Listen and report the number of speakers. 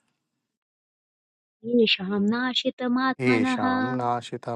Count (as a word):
two